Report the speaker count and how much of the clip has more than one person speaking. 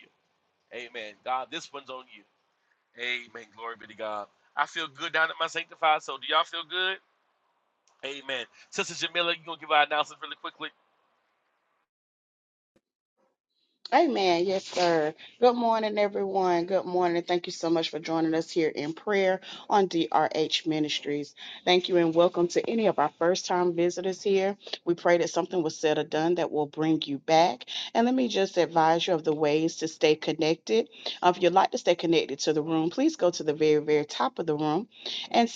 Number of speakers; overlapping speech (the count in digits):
2, no overlap